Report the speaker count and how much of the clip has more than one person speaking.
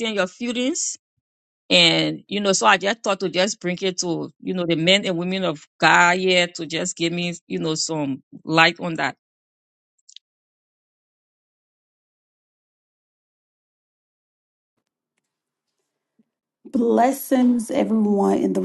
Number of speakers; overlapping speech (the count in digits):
2, no overlap